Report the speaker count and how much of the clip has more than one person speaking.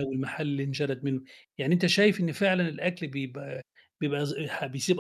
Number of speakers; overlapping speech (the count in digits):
1, no overlap